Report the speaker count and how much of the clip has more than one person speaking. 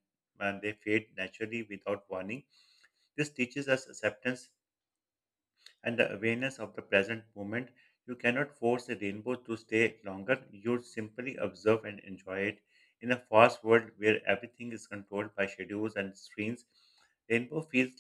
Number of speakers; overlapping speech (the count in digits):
1, no overlap